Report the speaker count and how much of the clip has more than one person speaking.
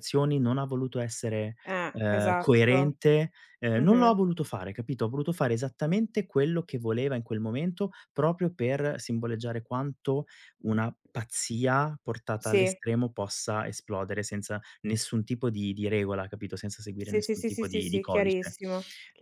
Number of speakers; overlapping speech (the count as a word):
two, about 16%